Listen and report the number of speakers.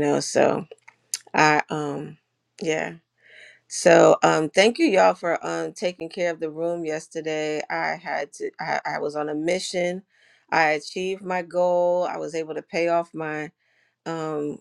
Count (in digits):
1